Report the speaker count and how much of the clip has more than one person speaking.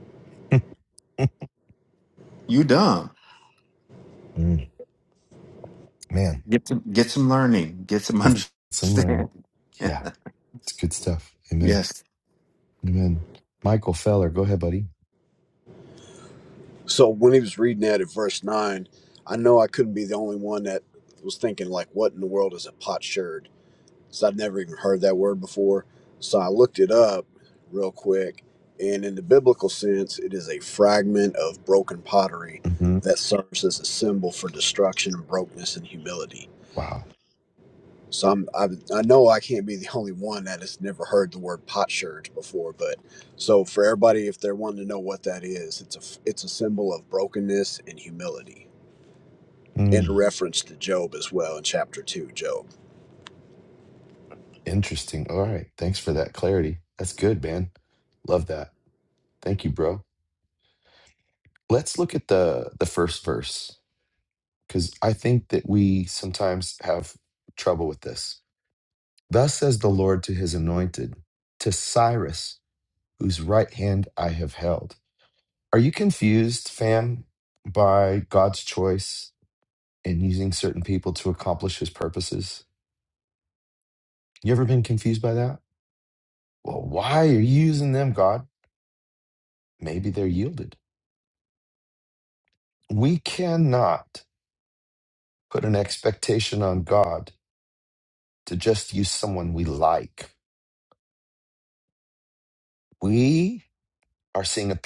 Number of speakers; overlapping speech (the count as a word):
three, about 1%